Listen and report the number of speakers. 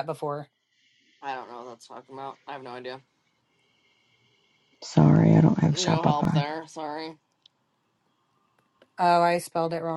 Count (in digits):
3